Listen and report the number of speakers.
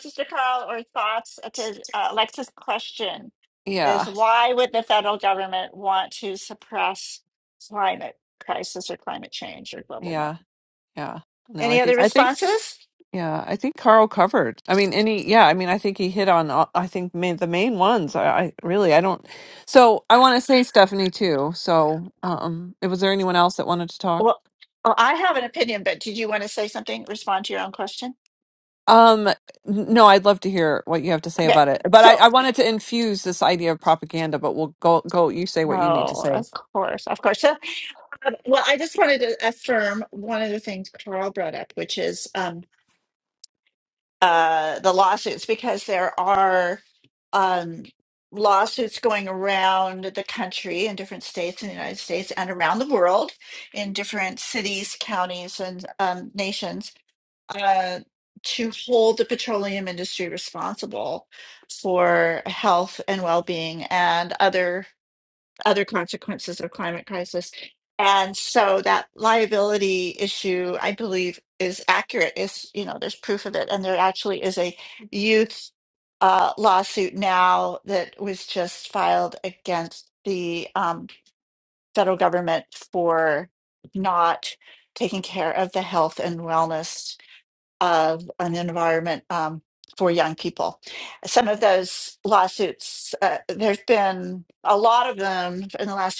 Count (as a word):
two